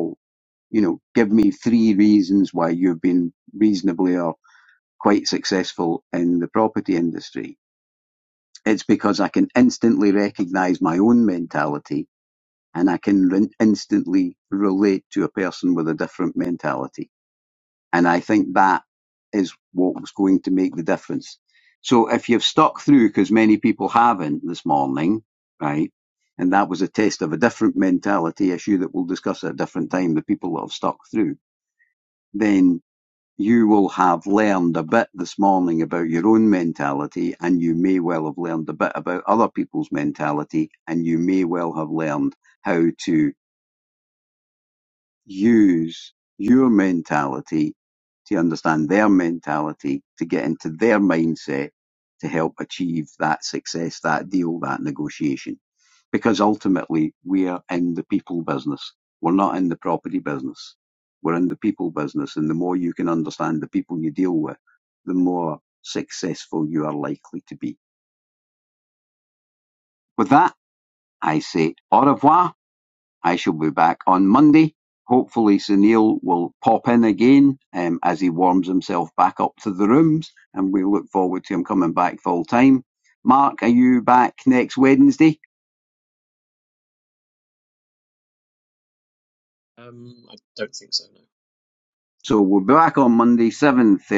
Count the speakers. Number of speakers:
2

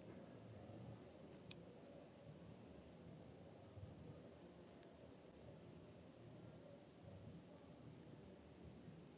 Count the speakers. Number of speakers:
0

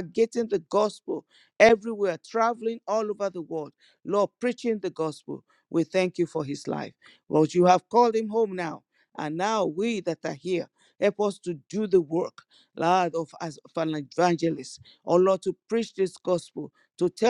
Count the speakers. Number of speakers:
1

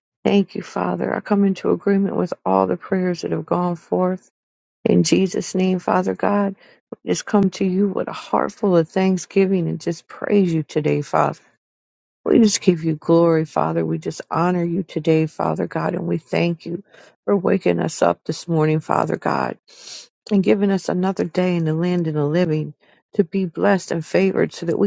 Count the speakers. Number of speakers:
1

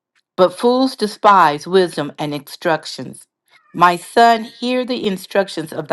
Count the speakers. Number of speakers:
1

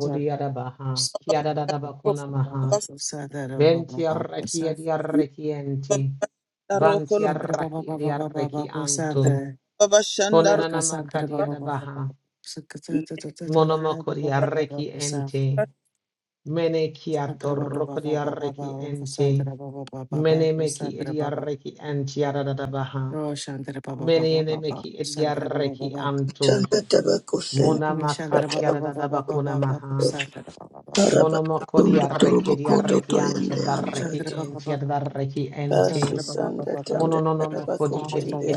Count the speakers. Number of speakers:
4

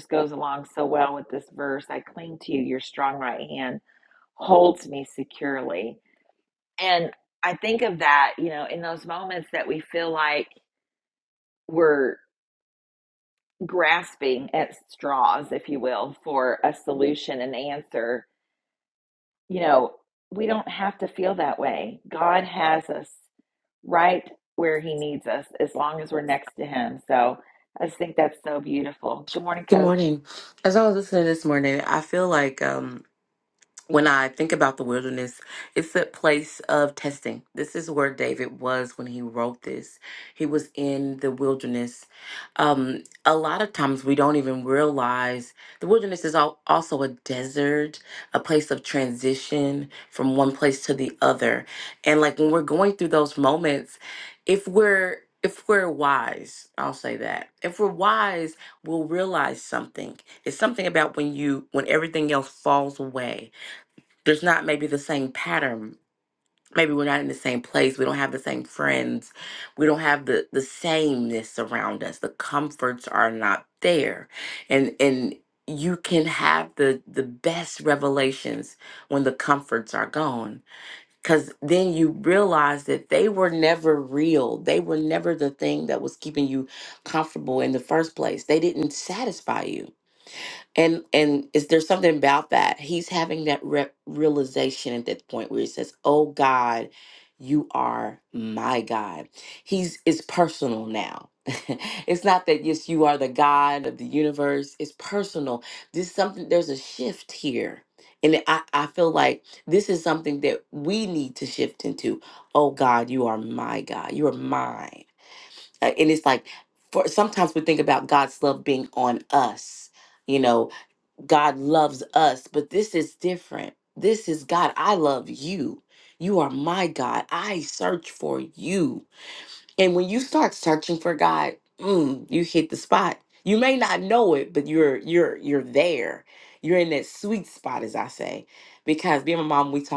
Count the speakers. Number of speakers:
2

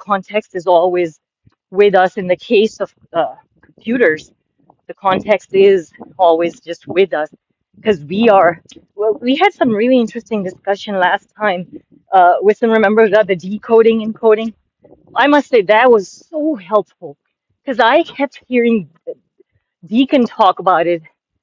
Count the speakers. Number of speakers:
1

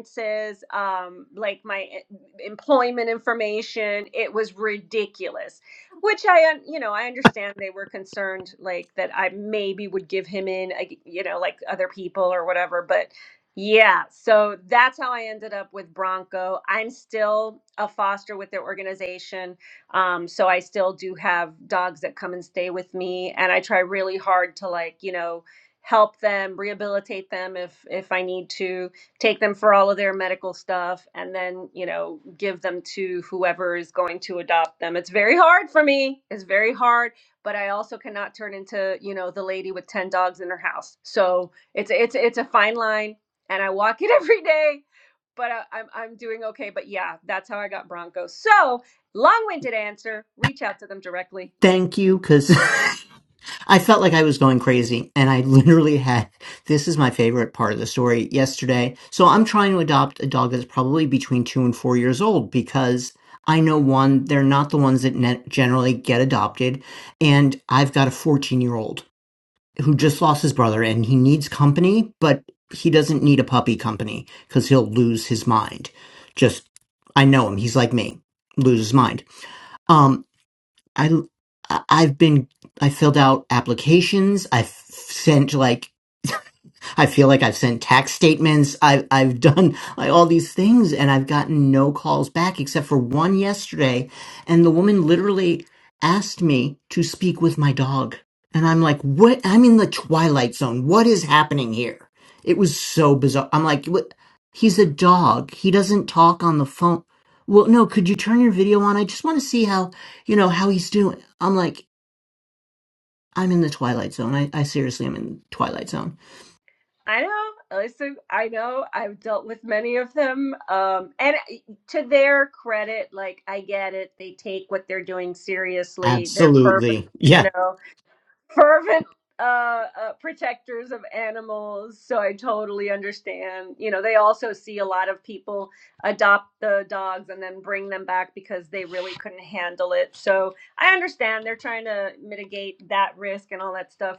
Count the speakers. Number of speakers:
2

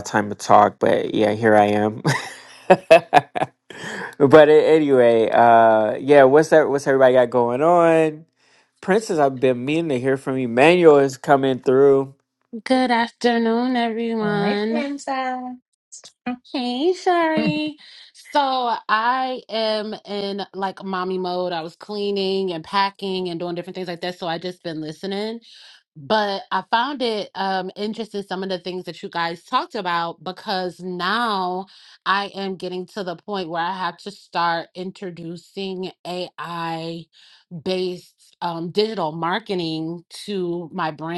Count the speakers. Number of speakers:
3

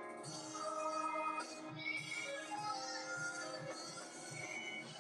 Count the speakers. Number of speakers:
0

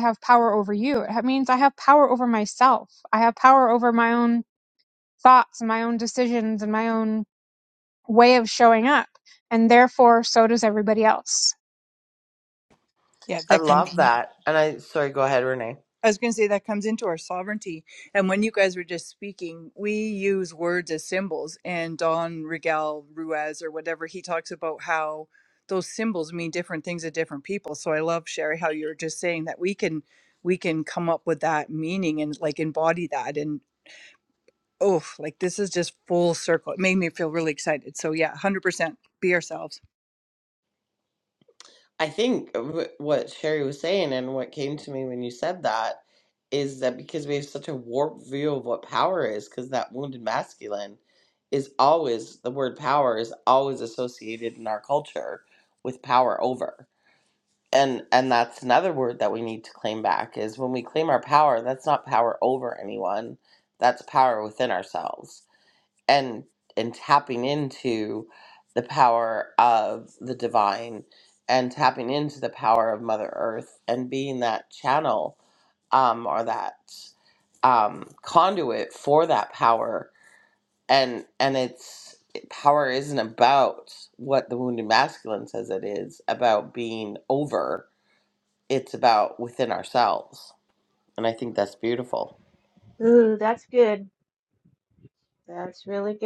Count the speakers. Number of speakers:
4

